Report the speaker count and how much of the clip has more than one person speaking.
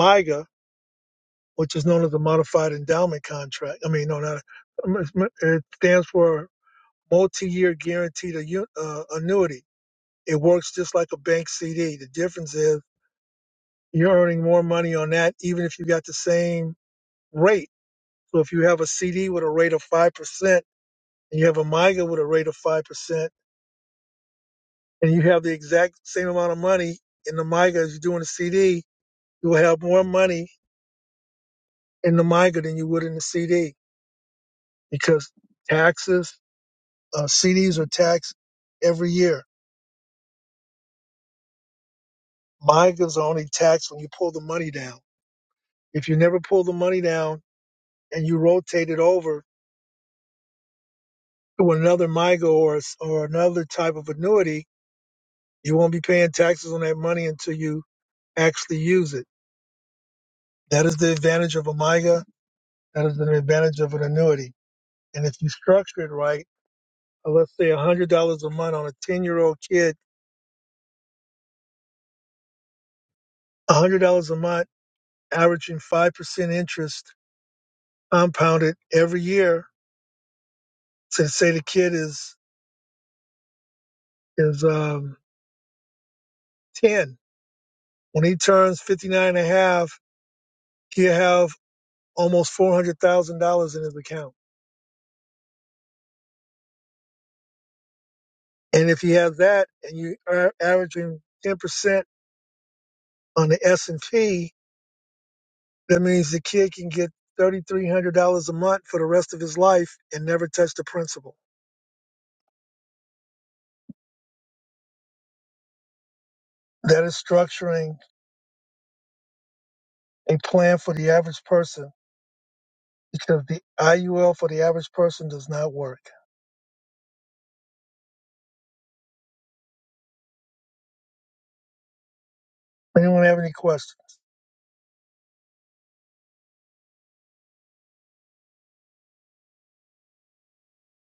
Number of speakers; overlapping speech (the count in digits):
1, no overlap